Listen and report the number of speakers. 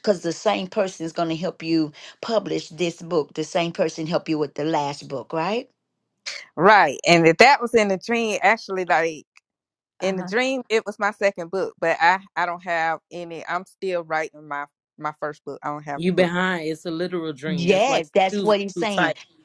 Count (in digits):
3